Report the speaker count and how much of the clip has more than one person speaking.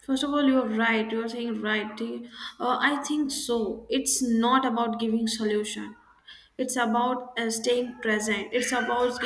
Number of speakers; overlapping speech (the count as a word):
one, no overlap